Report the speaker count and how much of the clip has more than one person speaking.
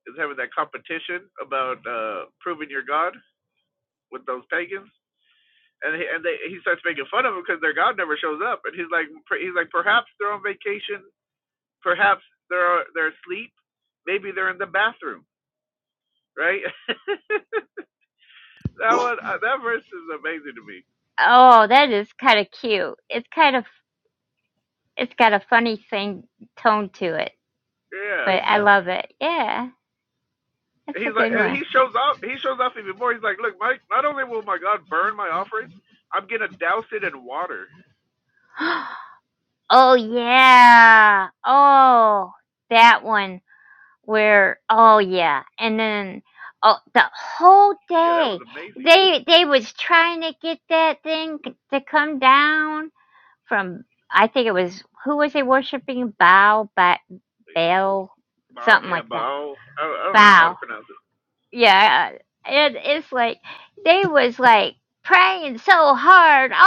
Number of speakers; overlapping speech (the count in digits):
2, about 3%